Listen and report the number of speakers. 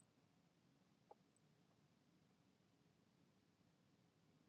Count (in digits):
0